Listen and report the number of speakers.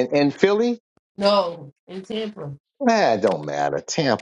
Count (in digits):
2